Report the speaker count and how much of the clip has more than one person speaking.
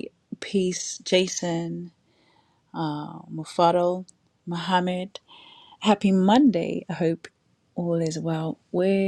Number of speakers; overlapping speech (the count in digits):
1, no overlap